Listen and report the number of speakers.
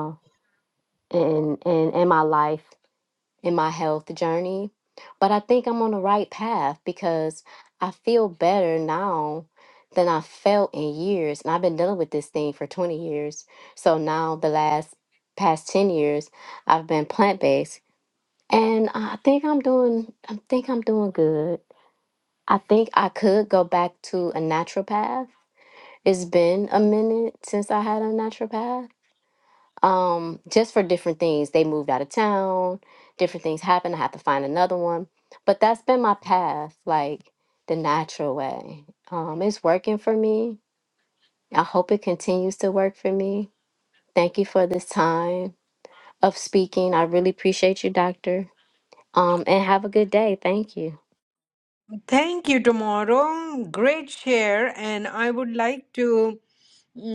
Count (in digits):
2